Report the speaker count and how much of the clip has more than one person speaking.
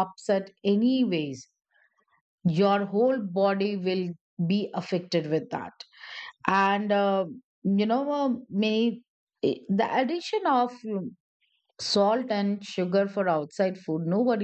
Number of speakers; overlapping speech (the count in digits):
1, no overlap